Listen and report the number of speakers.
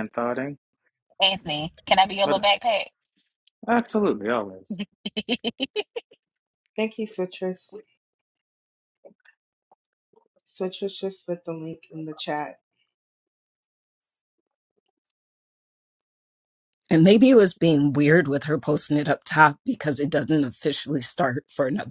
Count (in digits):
4